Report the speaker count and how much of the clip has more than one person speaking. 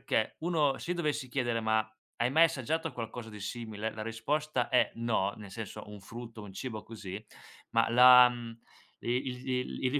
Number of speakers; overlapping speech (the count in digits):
1, no overlap